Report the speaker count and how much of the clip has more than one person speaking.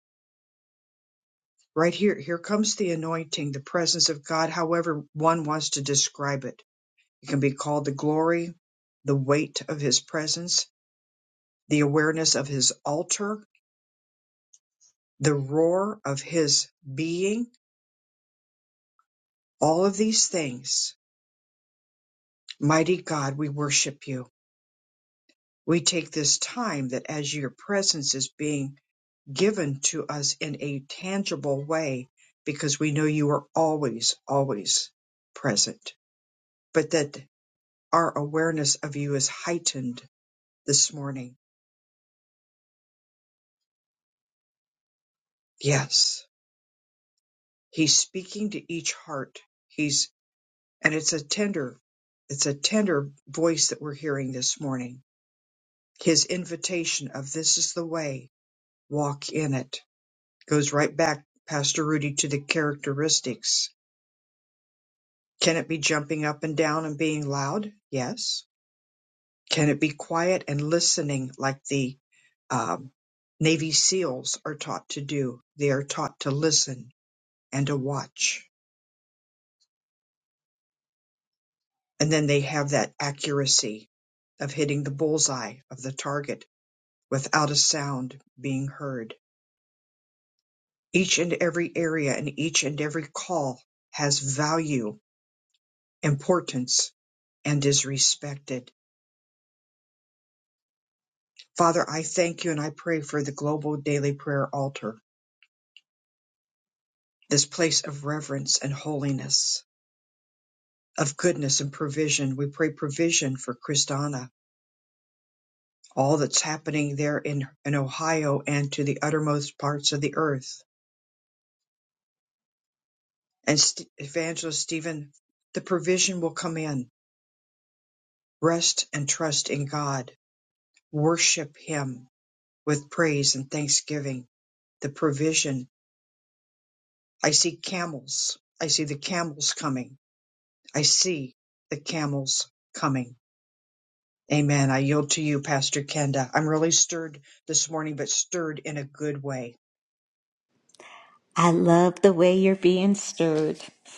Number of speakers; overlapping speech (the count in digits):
2, no overlap